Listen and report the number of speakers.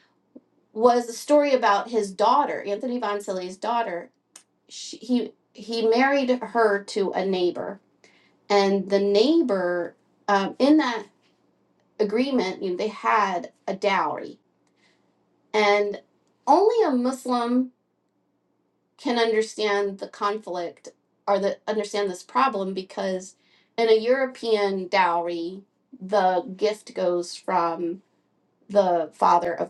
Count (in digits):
1